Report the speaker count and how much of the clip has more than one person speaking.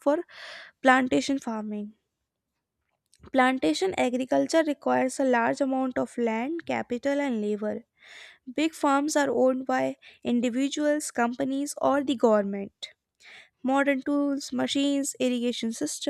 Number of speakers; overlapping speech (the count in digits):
1, no overlap